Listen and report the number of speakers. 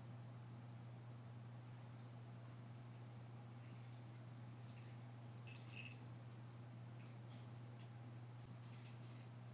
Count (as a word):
zero